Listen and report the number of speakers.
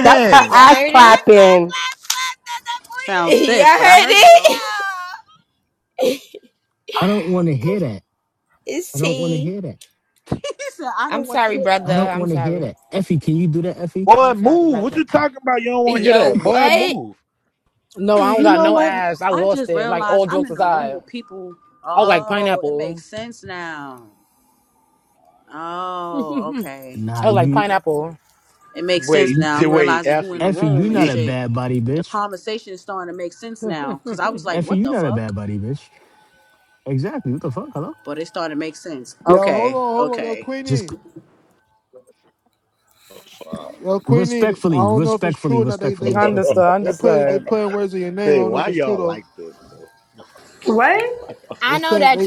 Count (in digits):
8